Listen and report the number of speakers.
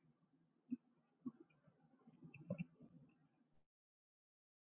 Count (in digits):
0